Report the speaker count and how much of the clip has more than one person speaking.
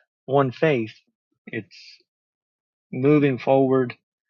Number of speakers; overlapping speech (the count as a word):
one, no overlap